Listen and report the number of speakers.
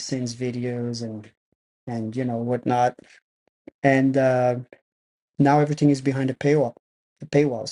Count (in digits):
1